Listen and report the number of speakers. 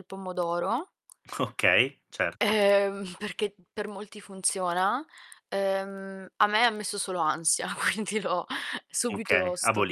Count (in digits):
2